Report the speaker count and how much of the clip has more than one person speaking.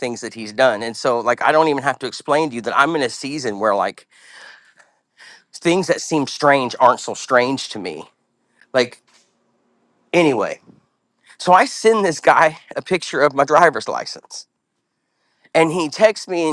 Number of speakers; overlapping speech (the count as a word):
one, no overlap